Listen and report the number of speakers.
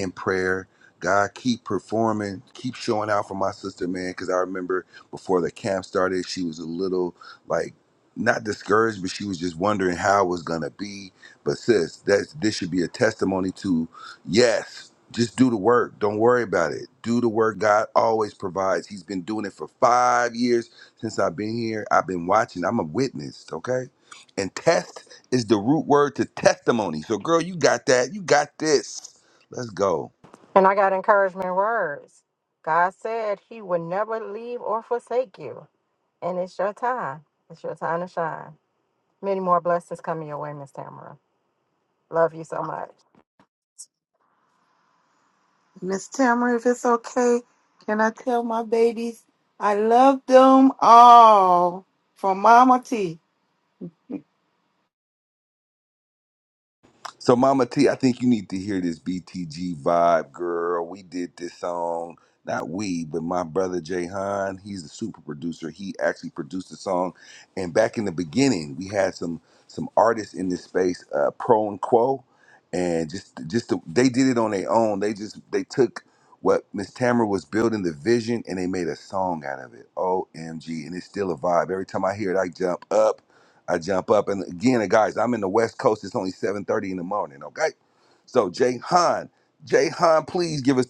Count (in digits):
3